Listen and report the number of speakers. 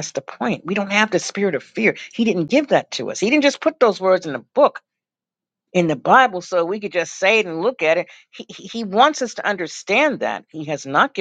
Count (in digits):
1